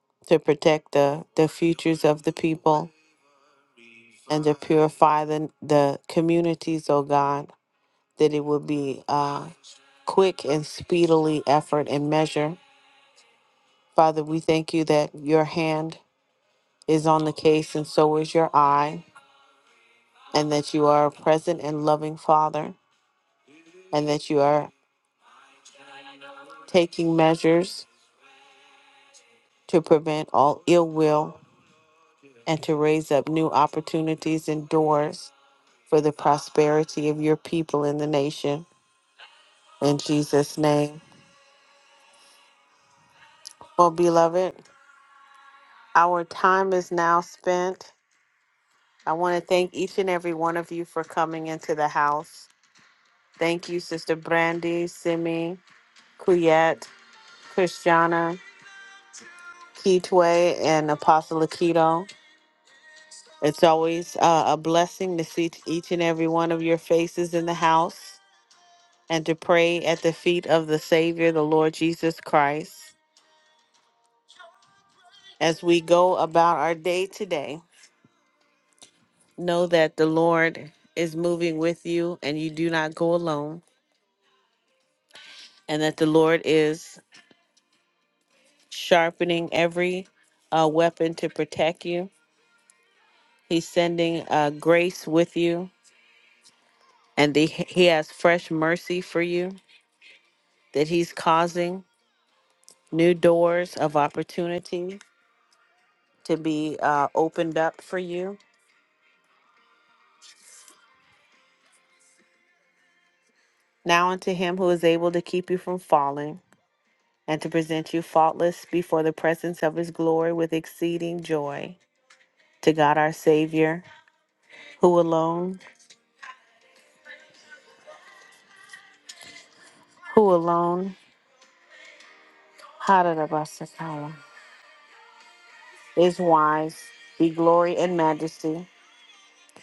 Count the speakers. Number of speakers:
one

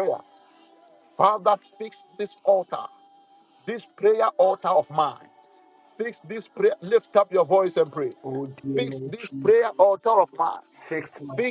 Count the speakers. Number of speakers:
two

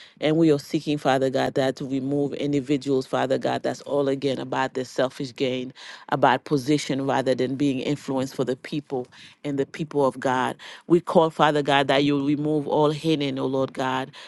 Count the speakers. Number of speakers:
one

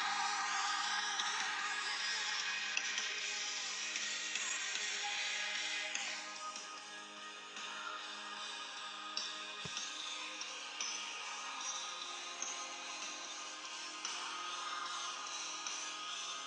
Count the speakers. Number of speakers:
zero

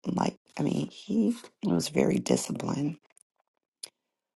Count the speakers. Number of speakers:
one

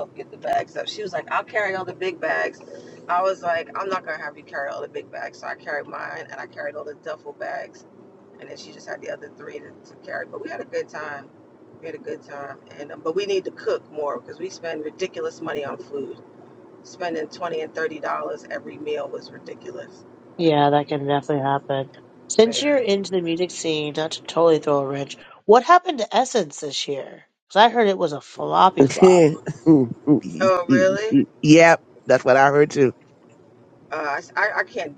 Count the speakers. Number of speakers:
three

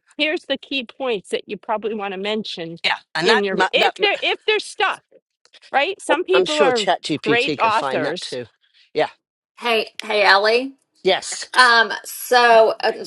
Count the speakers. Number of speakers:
three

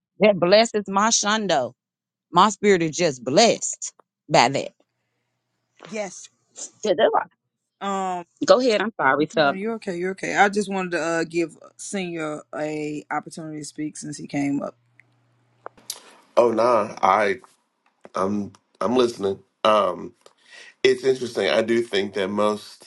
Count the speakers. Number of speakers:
three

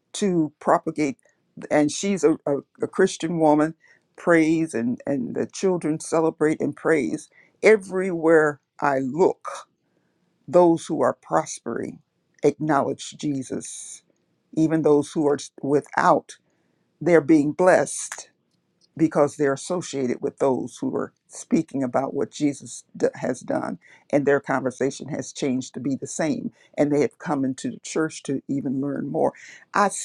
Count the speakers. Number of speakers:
one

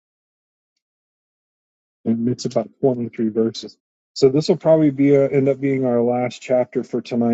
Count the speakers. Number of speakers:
one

